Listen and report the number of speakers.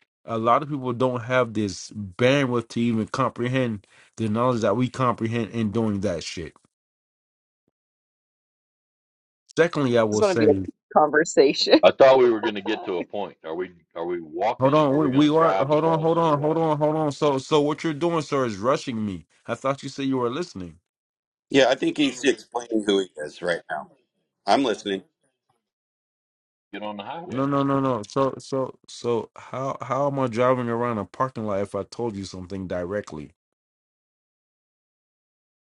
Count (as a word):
four